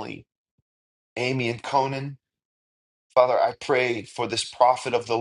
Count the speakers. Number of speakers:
one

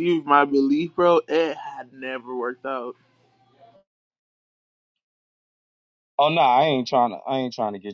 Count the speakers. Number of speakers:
two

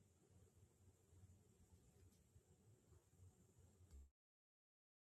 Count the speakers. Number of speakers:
zero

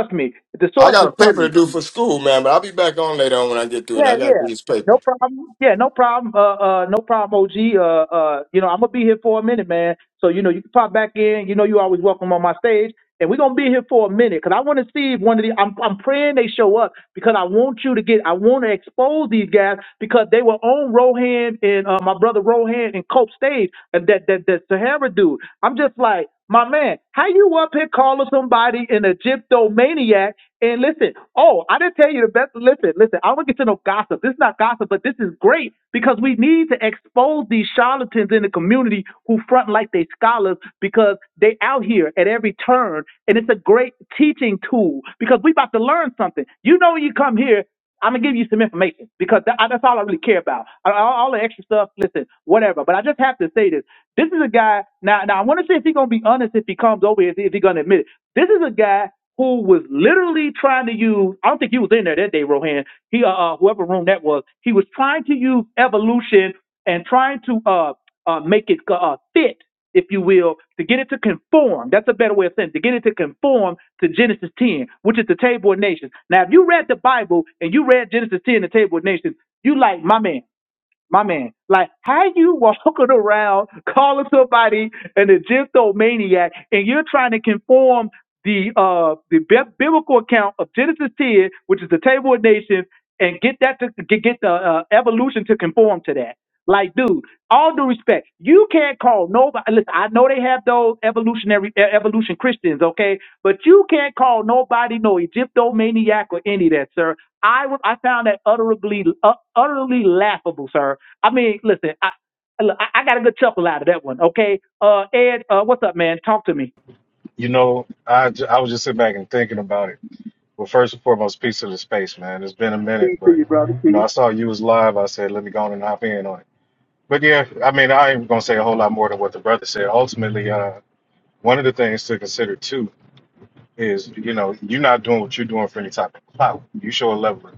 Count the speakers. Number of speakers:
three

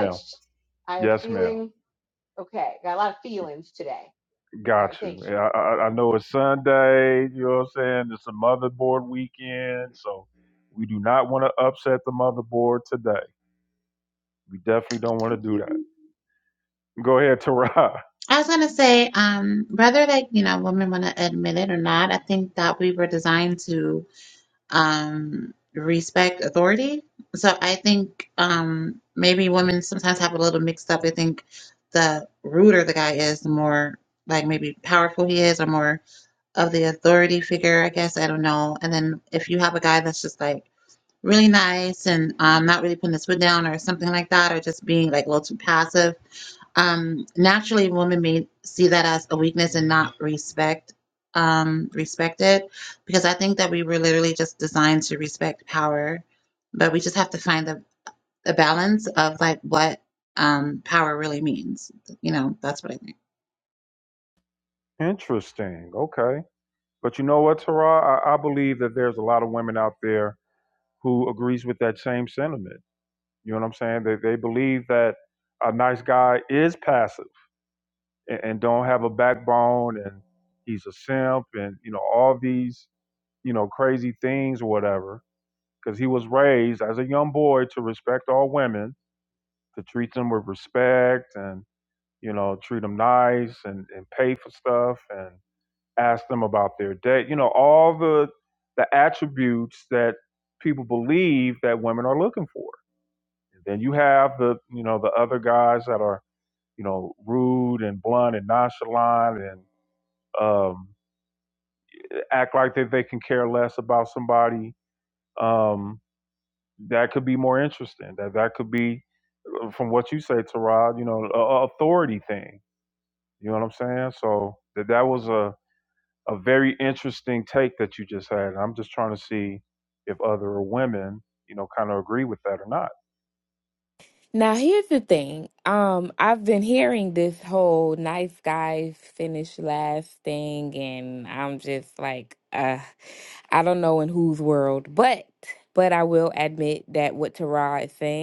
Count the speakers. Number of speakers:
four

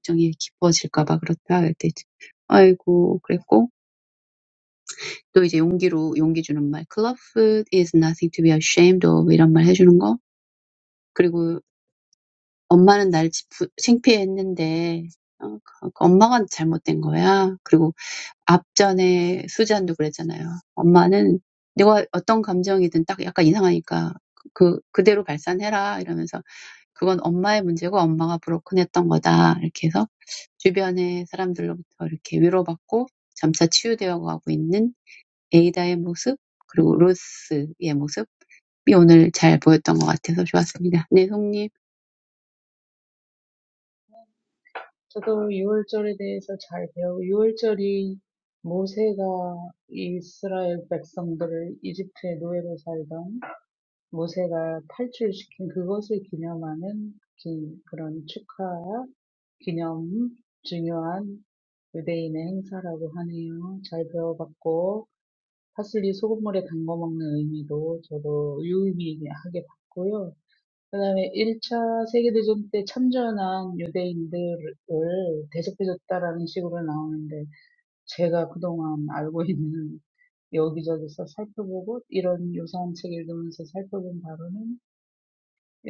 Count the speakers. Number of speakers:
two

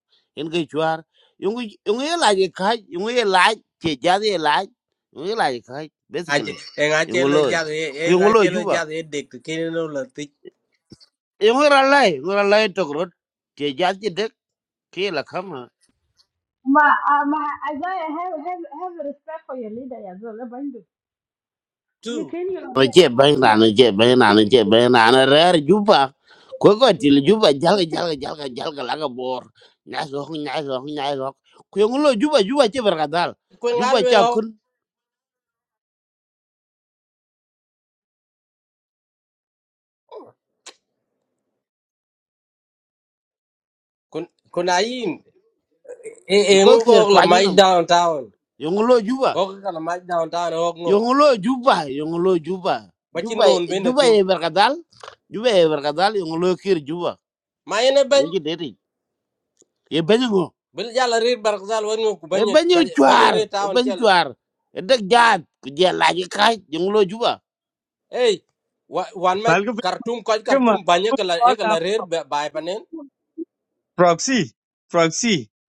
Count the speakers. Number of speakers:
four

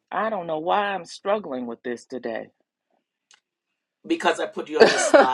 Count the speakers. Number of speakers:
two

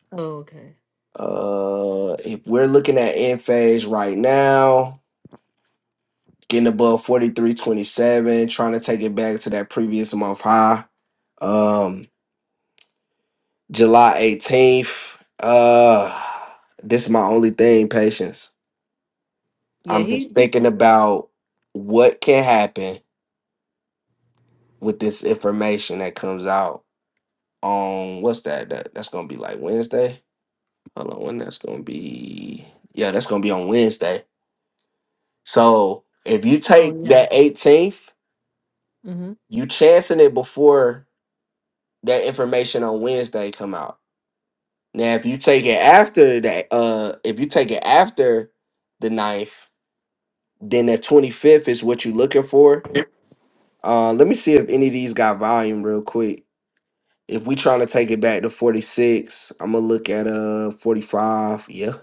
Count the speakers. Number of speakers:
two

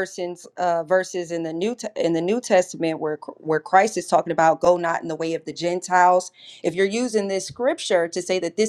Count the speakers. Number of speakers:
one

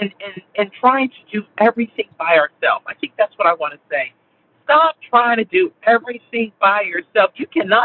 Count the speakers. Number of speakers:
one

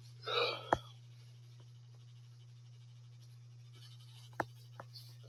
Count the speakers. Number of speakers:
zero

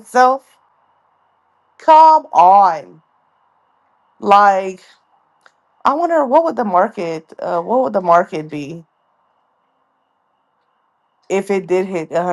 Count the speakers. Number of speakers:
one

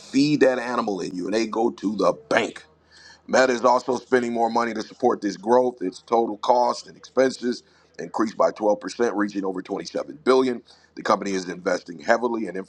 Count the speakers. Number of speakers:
one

